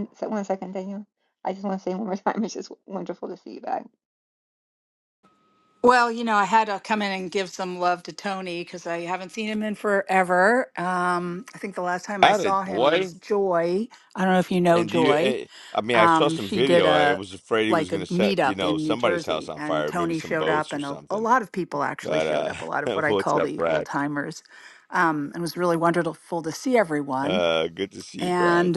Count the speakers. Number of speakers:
three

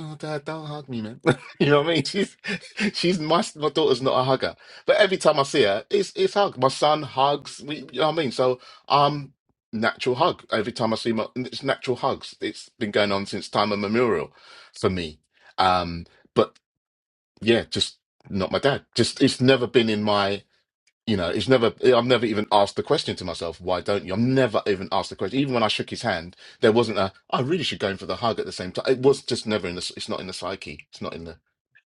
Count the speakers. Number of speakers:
one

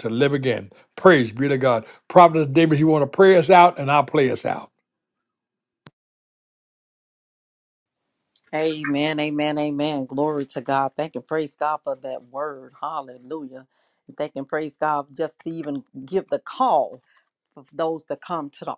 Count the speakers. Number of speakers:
two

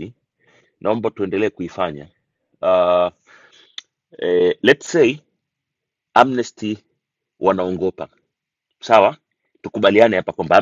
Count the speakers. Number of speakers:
one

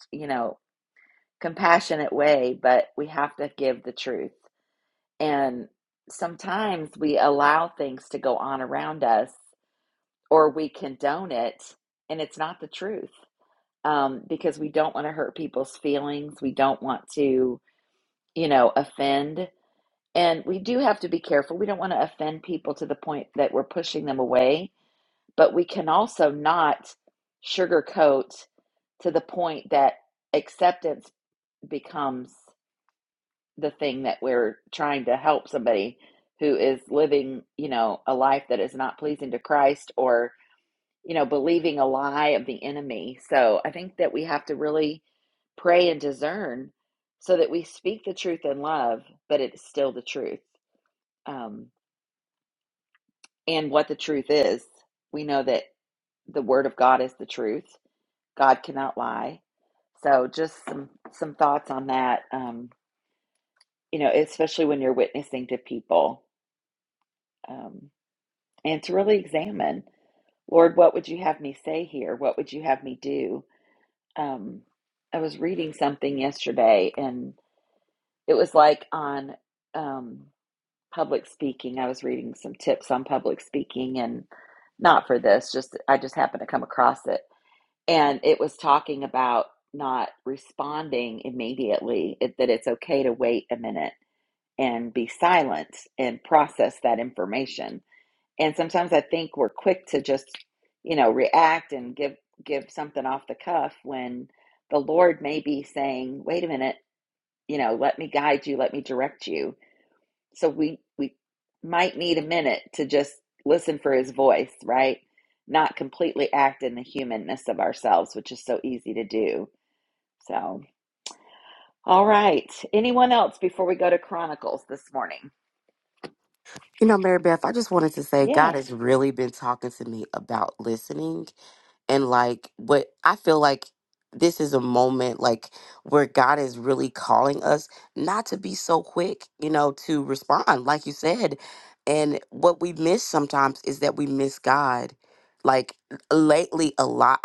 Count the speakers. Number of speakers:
two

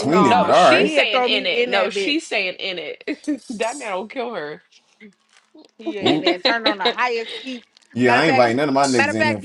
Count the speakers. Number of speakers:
three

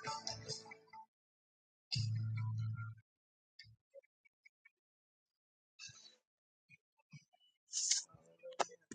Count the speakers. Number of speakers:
zero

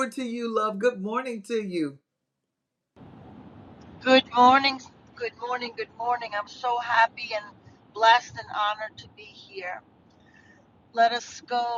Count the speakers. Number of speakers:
two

